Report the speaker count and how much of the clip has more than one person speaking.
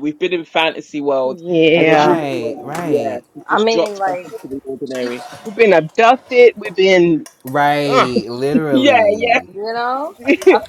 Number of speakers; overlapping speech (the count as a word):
four, about 31%